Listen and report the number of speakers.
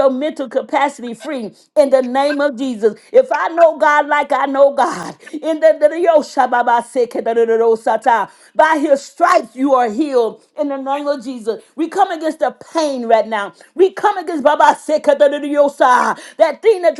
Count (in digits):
1